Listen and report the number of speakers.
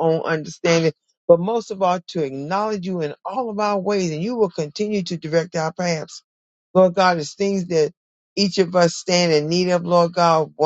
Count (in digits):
1